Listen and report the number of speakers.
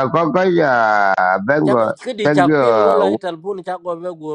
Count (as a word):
two